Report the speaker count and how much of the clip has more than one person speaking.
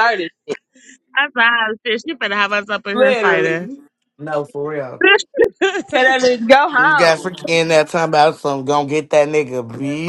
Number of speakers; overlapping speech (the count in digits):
3, about 15%